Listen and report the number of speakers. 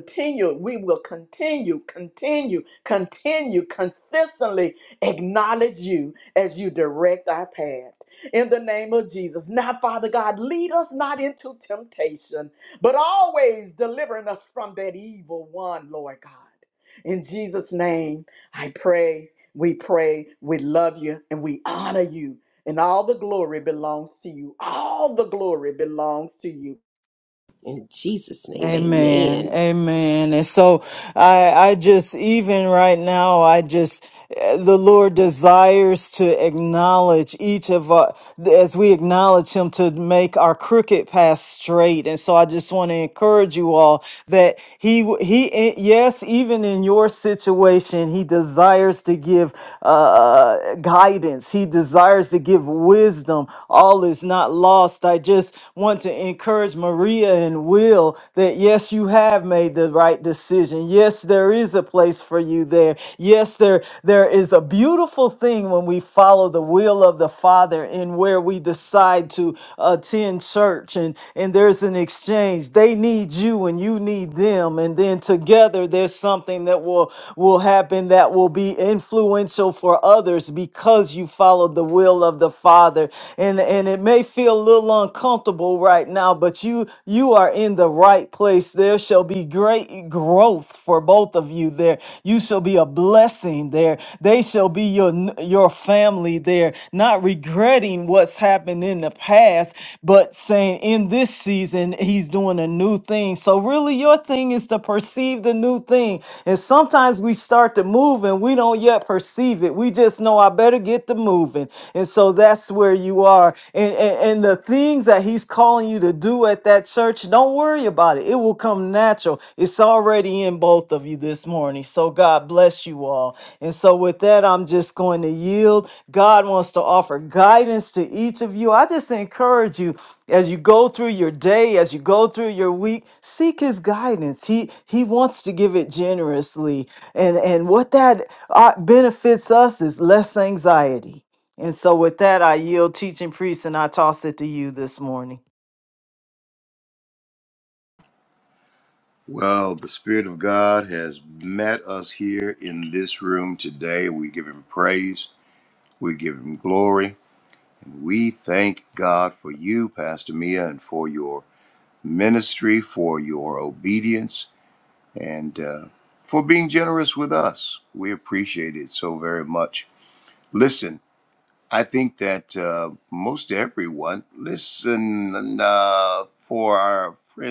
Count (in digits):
4